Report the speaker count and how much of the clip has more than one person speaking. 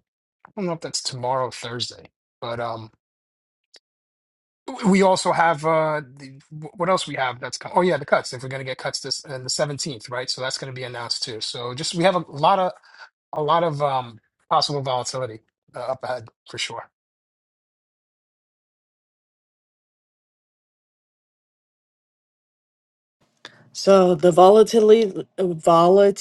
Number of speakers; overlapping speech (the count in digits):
2, no overlap